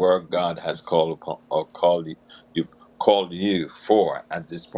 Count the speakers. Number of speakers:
1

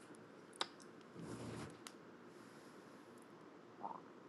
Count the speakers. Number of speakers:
0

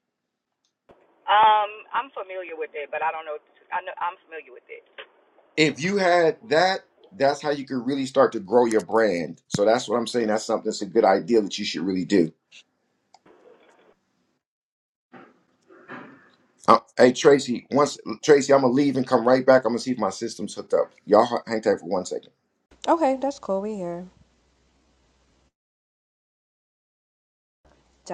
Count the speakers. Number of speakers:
3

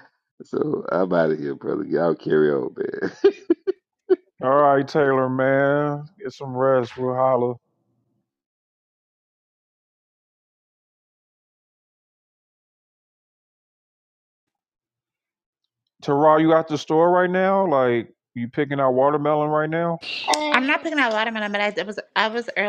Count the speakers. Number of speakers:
3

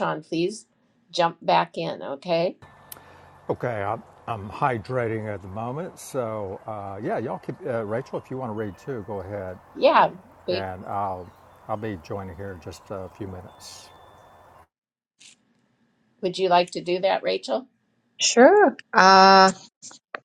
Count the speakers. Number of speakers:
3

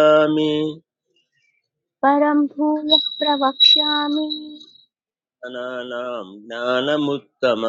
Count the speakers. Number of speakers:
2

